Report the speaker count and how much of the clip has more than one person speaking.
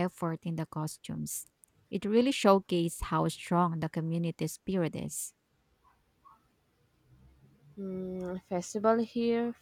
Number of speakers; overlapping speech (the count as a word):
two, no overlap